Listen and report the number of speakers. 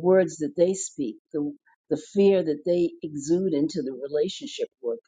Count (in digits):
1